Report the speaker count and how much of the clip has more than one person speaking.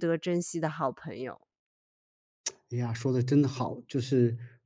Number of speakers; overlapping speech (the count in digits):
2, no overlap